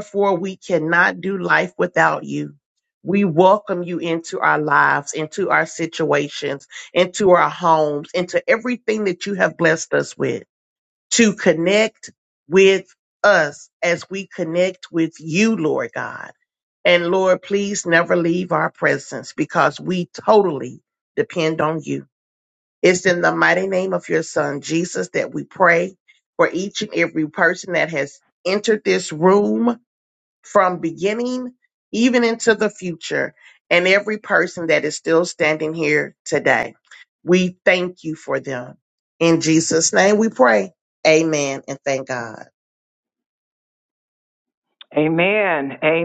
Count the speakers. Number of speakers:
two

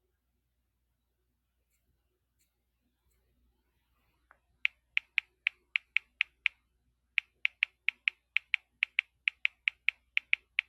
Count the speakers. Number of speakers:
zero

